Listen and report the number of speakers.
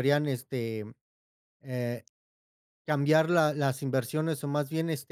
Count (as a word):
one